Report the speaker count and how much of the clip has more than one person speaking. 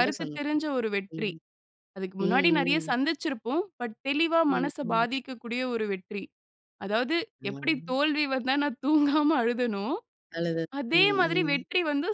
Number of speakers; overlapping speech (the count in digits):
2, about 25%